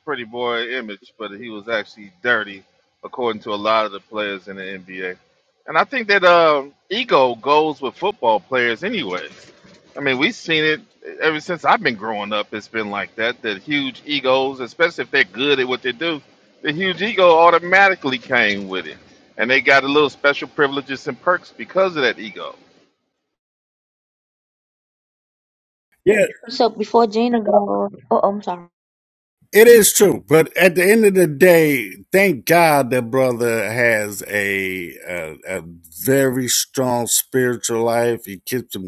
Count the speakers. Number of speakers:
three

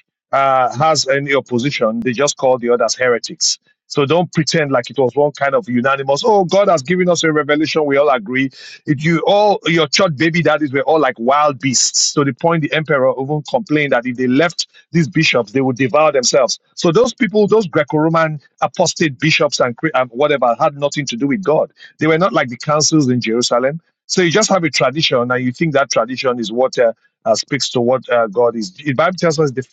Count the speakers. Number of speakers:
one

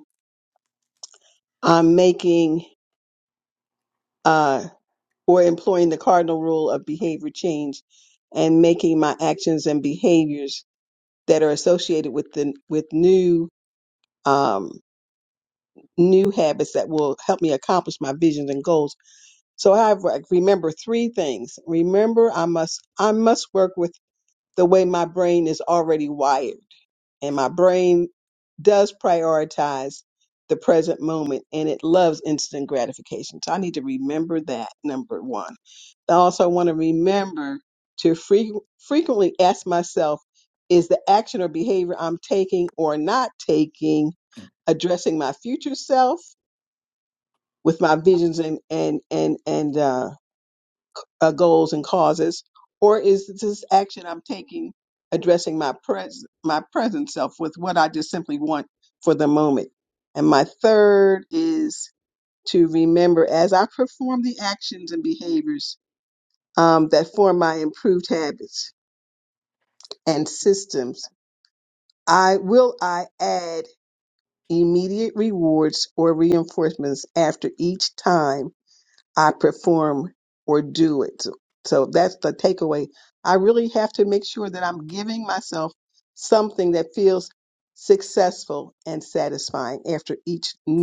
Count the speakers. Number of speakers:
one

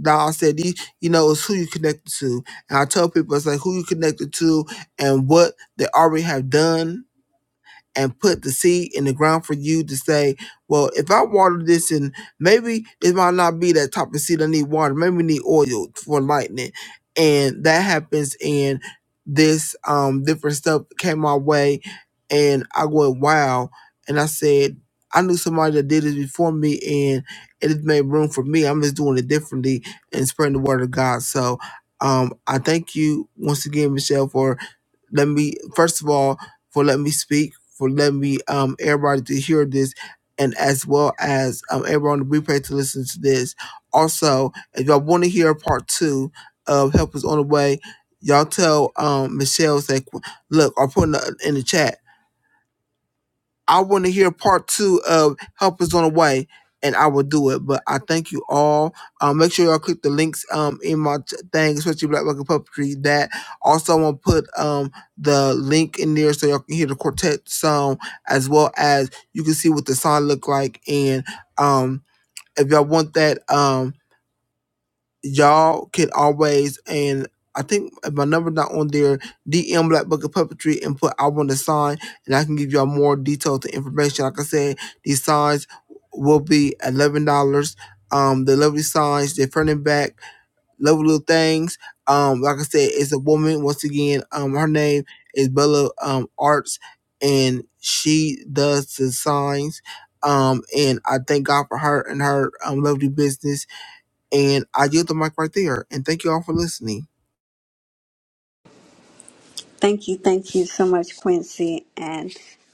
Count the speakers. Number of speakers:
two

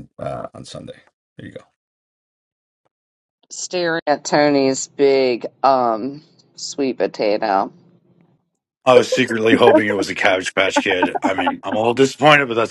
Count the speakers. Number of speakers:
three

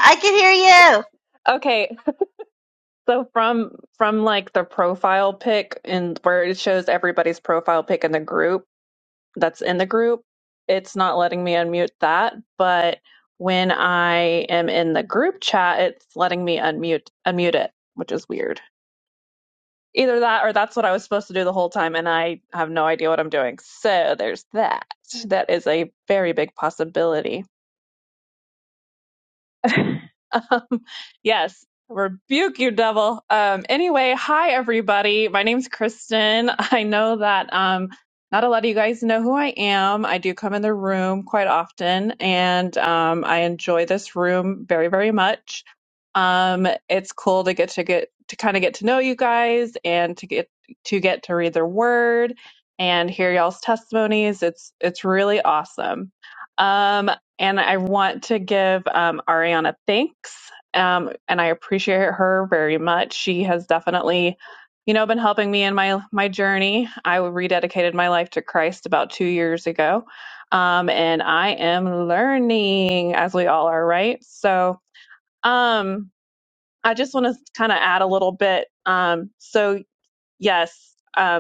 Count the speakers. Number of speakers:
two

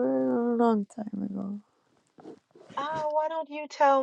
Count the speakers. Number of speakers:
two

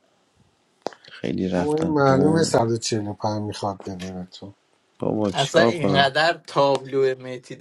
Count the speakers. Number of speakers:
three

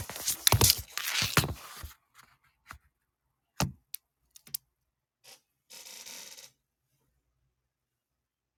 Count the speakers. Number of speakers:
zero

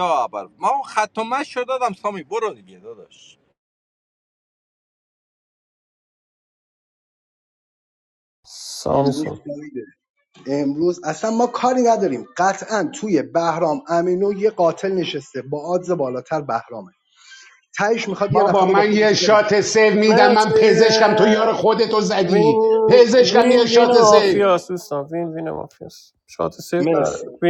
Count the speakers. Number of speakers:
four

